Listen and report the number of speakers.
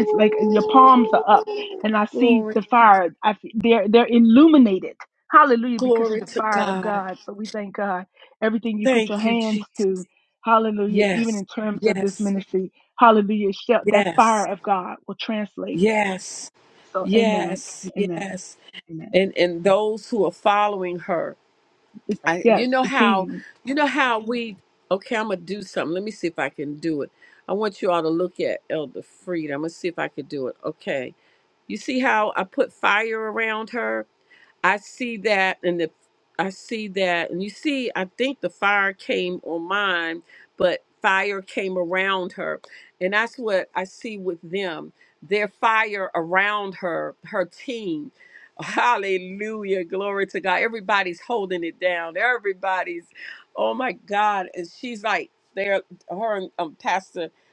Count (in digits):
2